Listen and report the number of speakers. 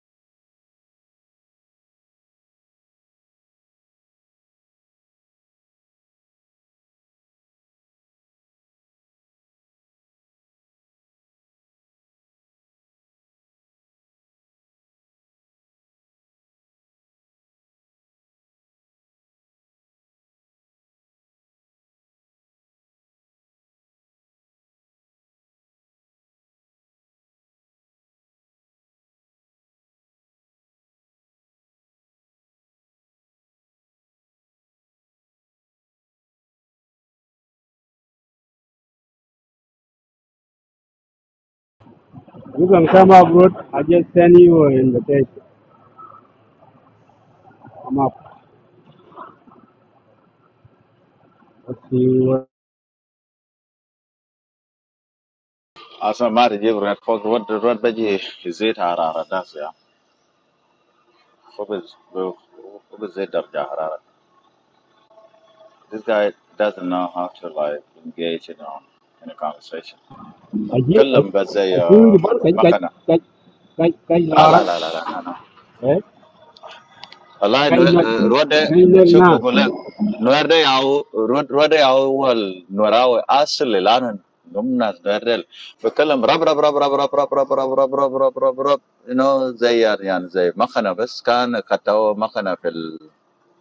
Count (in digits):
2